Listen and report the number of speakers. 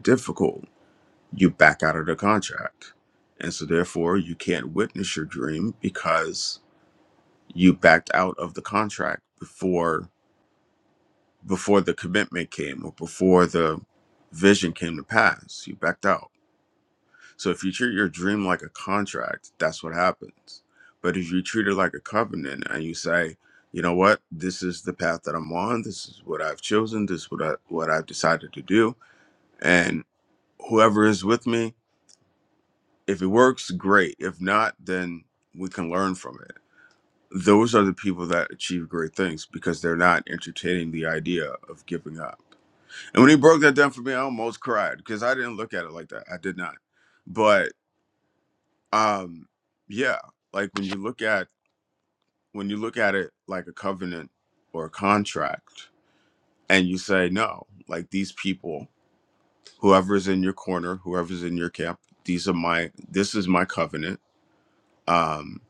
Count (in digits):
1